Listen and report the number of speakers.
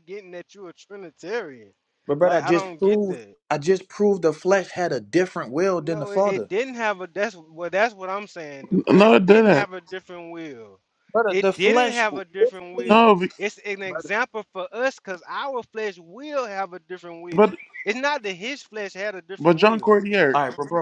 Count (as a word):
three